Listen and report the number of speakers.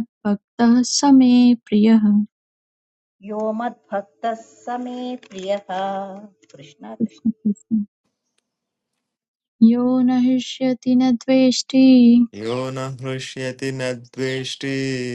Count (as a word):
three